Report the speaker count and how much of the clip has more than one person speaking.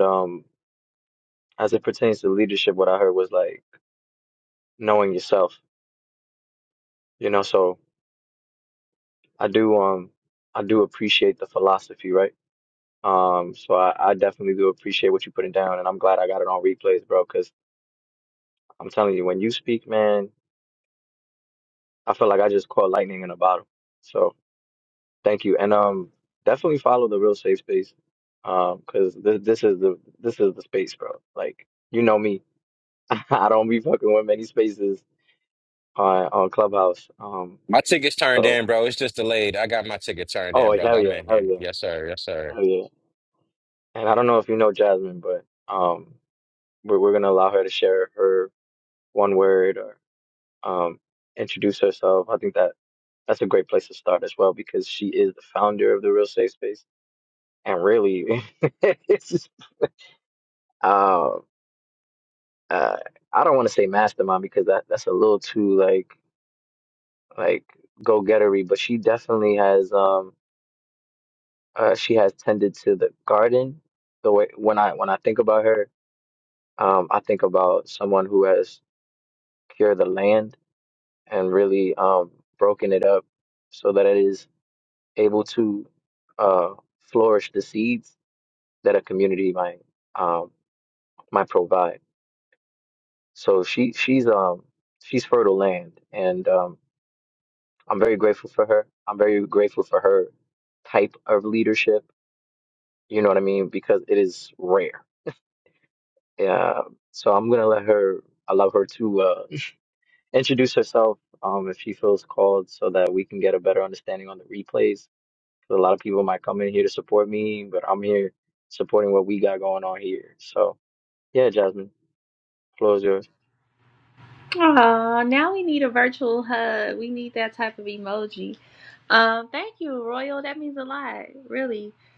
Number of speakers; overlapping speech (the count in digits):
3, about 1%